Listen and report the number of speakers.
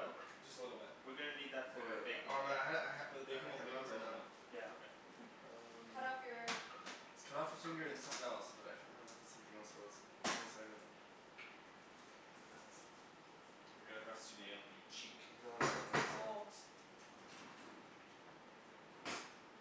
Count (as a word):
four